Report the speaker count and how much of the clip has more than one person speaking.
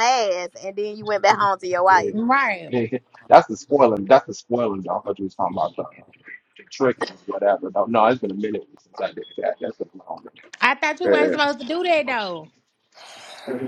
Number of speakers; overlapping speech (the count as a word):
three, about 5%